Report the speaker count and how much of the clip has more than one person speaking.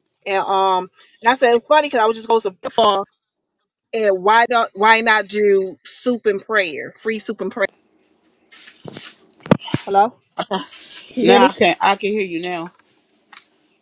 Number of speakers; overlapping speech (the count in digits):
2, about 2%